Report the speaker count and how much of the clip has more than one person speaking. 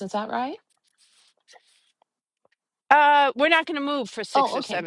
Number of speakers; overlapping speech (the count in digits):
2, about 10%